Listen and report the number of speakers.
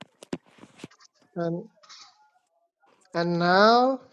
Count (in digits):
1